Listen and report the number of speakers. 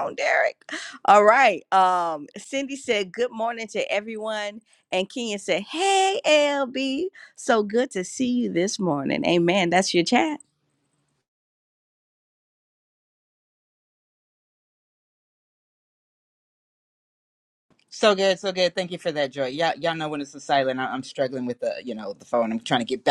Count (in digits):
2